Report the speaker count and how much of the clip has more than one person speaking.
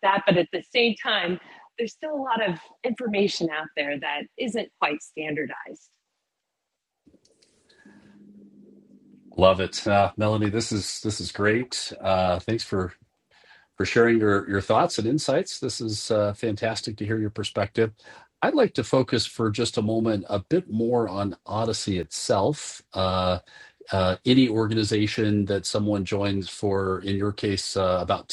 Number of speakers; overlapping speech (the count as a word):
two, no overlap